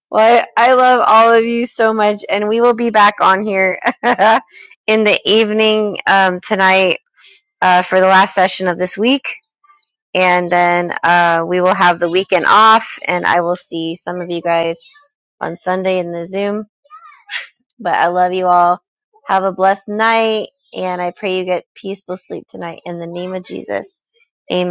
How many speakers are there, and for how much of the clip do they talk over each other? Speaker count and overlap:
one, no overlap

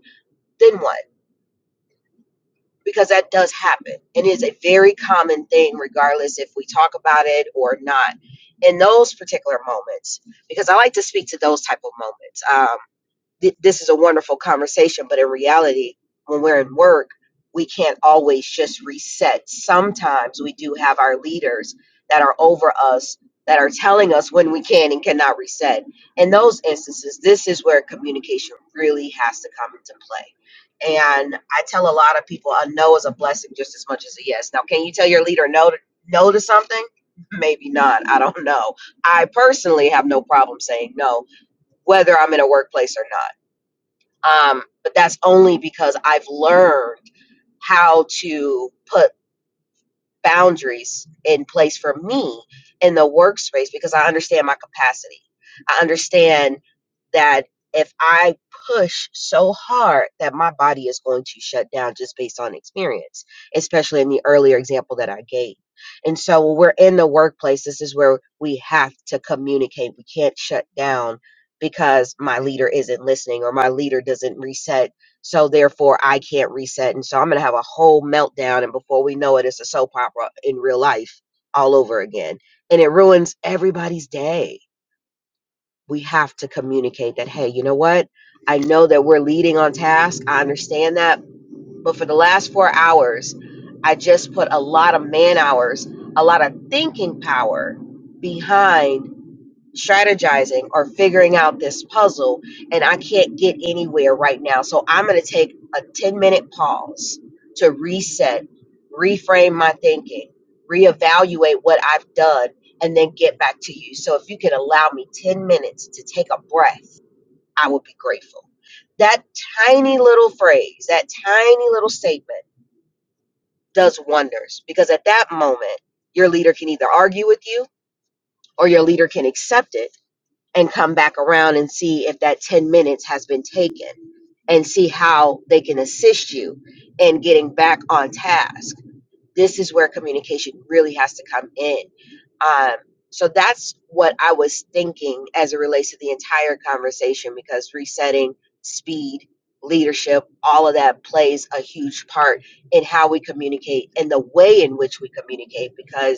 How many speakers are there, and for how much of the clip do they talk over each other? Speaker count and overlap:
one, no overlap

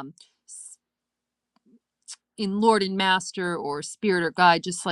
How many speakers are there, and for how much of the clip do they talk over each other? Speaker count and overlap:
one, no overlap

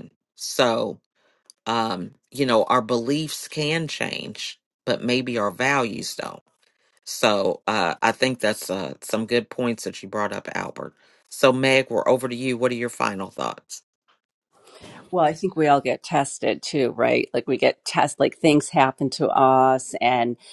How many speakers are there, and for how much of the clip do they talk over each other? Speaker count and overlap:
two, no overlap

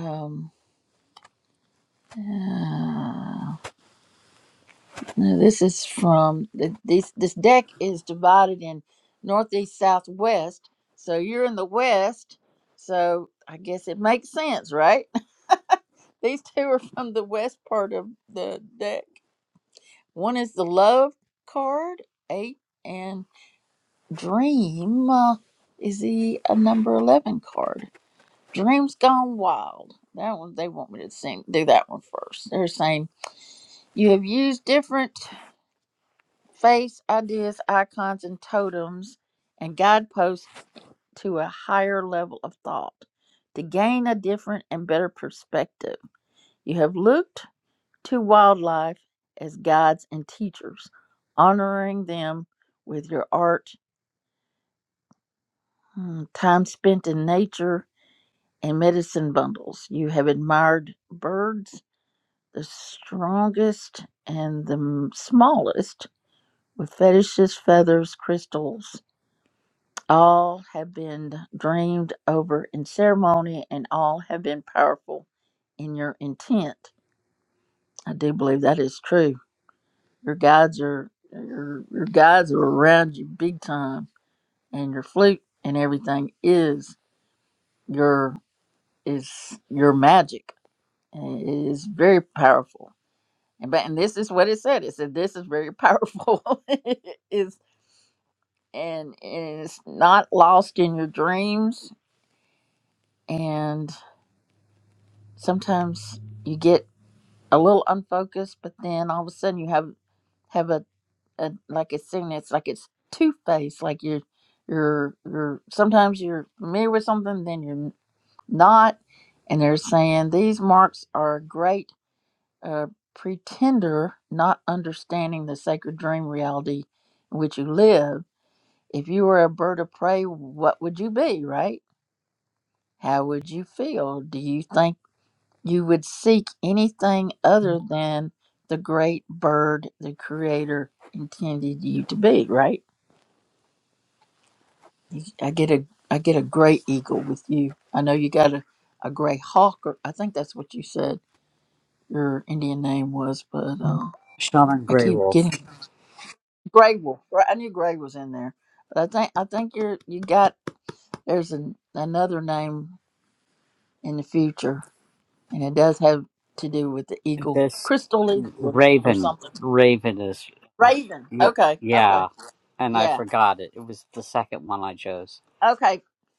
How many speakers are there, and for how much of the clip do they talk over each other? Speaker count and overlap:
two, about 2%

